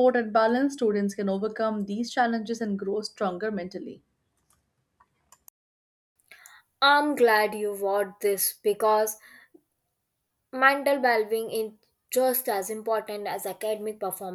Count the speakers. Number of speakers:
2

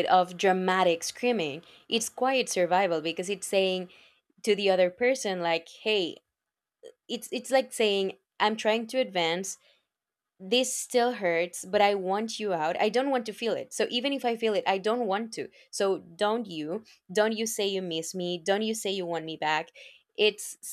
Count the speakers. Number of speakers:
1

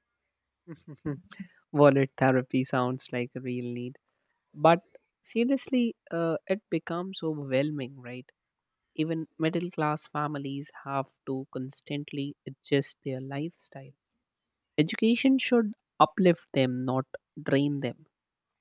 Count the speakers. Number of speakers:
1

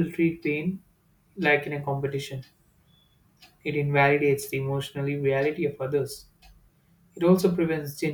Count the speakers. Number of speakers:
1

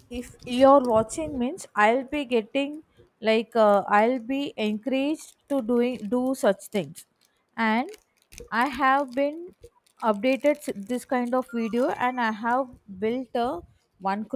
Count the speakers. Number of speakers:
1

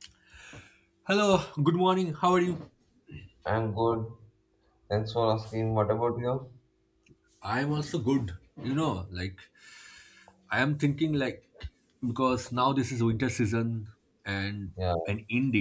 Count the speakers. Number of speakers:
2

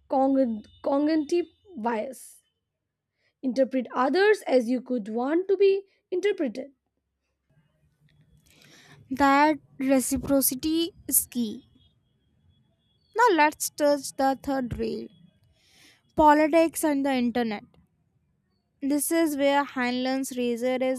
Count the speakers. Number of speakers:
2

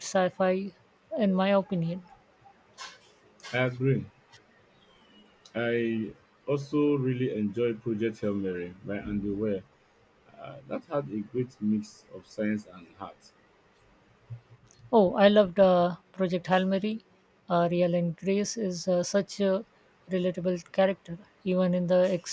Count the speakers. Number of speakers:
2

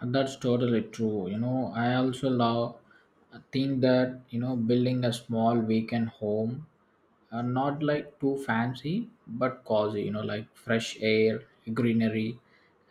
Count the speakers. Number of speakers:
1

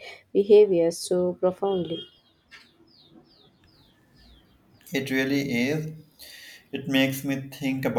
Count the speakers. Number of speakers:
2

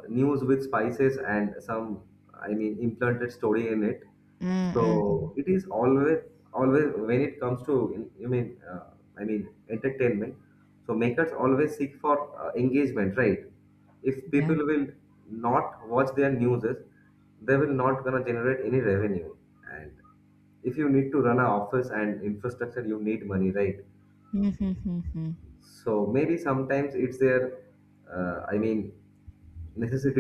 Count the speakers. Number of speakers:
2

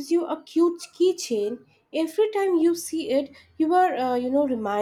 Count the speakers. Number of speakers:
1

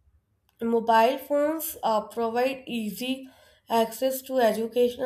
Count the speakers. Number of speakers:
1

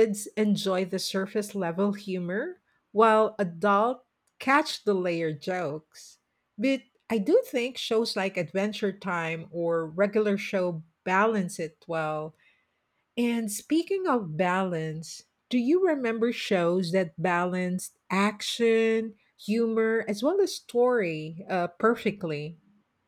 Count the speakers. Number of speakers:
1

